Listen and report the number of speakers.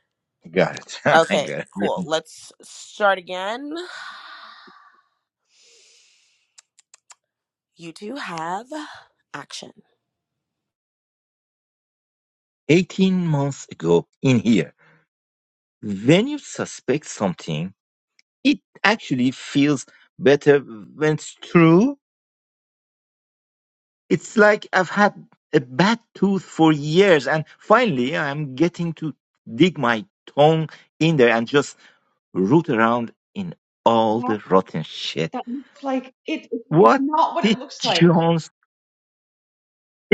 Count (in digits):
3